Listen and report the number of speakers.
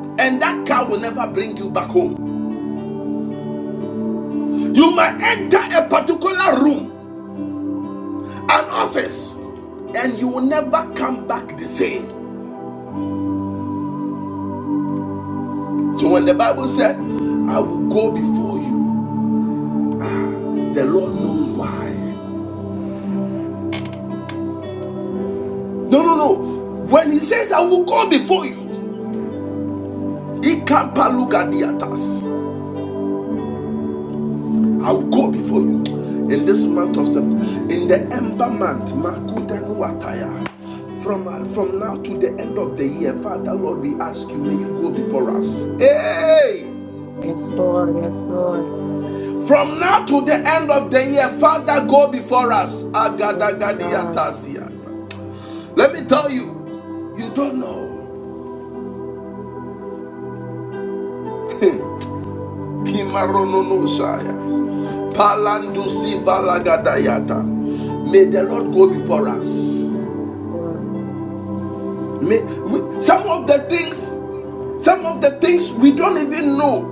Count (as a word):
two